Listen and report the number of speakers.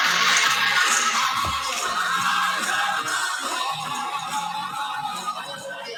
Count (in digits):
0